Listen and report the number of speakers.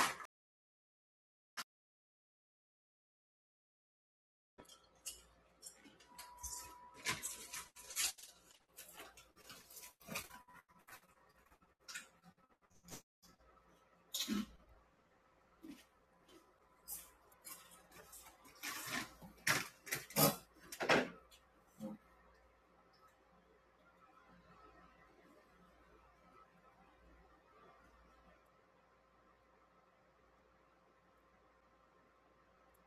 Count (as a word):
zero